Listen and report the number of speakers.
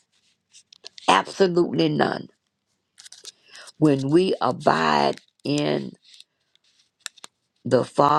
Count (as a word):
one